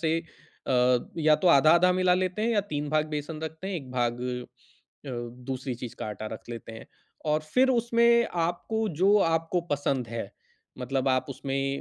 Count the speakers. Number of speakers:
one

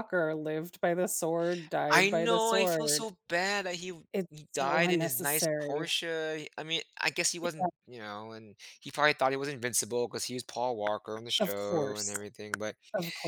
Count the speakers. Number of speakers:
two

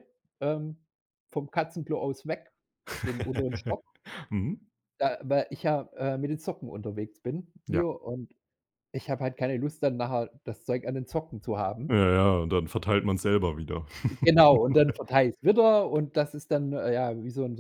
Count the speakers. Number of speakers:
two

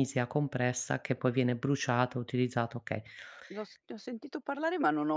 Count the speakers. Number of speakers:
two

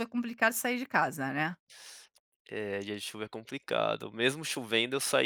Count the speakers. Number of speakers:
two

